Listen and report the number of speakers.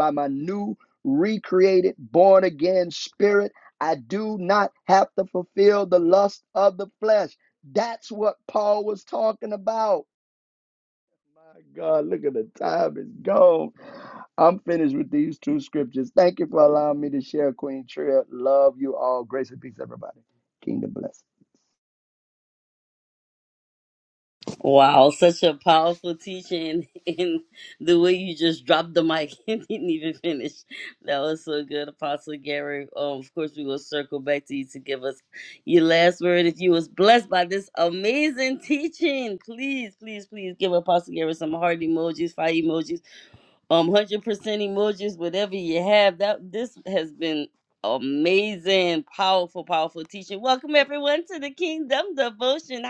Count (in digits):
2